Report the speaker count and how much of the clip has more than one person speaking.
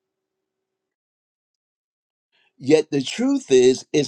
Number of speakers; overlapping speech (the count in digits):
1, no overlap